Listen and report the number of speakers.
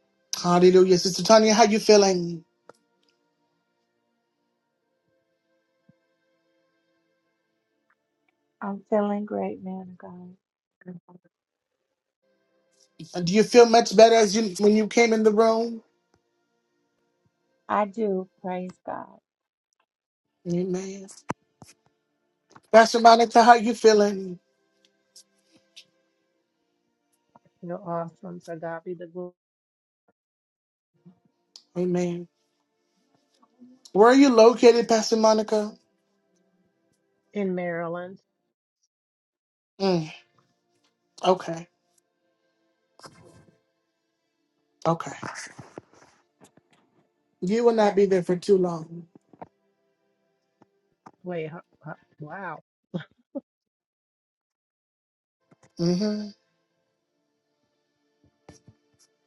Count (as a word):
three